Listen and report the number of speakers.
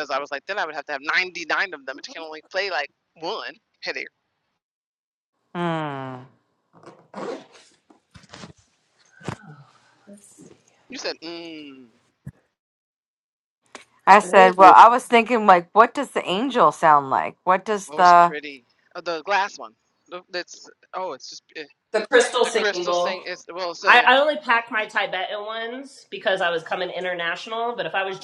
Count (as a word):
three